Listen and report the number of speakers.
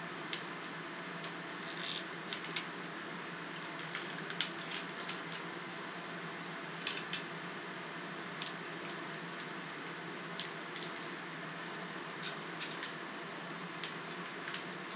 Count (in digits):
0